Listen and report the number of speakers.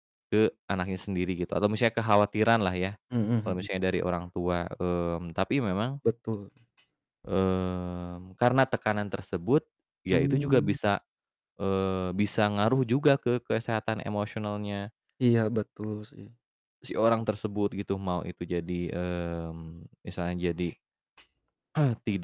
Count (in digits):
2